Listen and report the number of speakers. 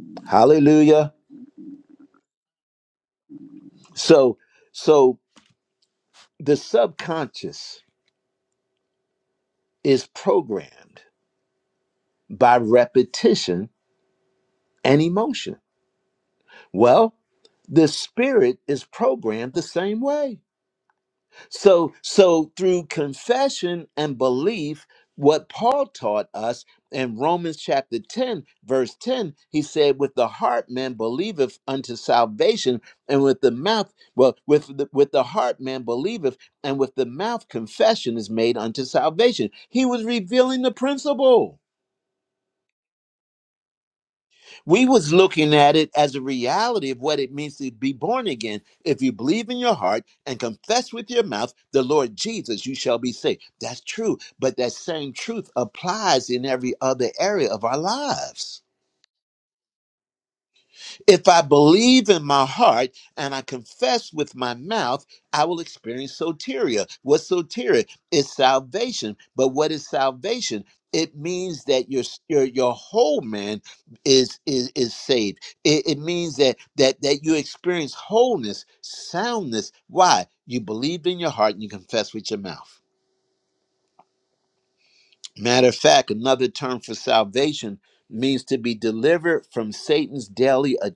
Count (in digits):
1